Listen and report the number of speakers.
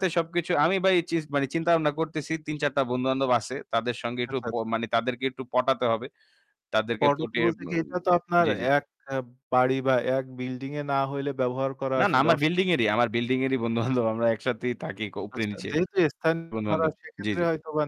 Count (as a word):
two